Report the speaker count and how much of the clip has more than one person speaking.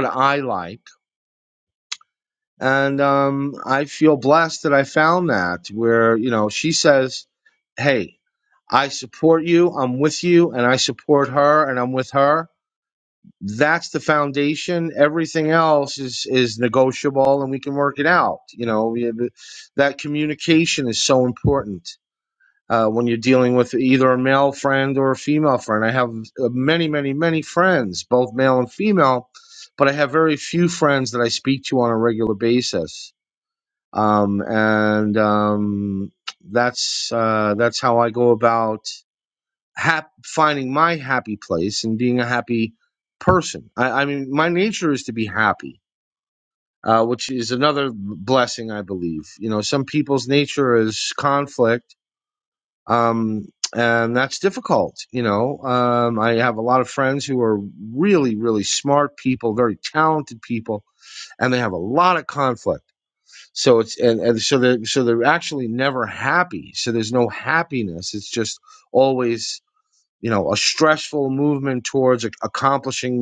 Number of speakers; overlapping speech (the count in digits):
1, no overlap